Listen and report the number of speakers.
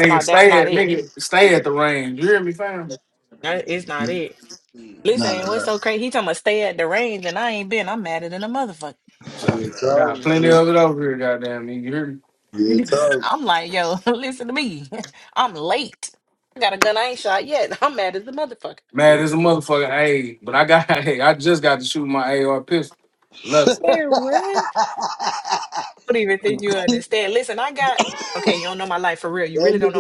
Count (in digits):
3